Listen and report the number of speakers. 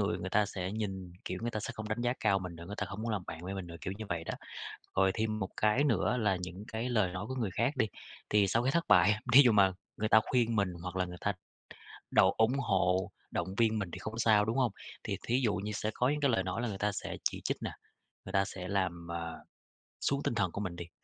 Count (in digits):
1